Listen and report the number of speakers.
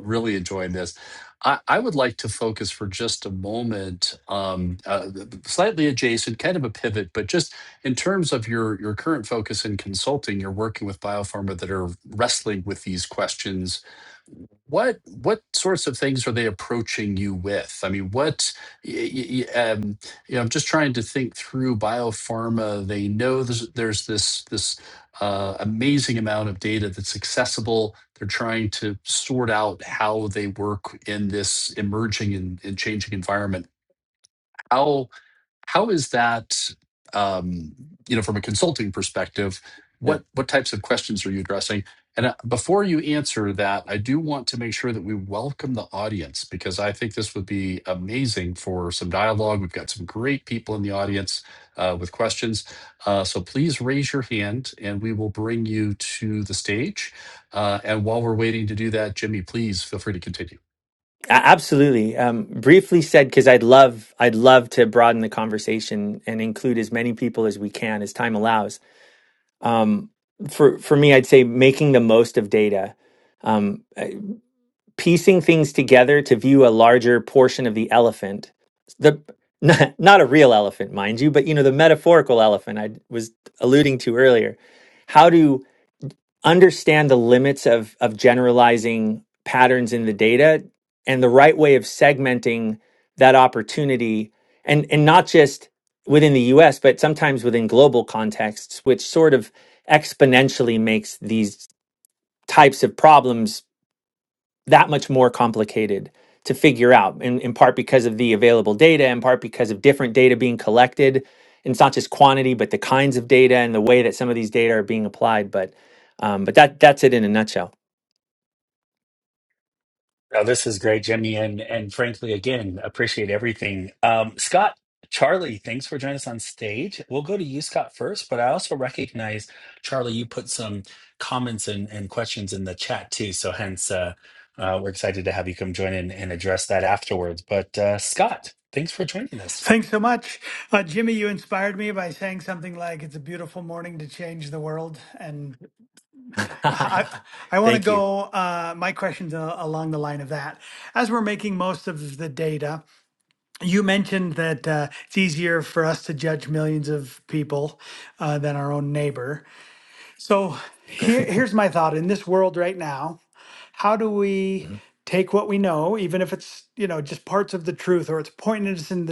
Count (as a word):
four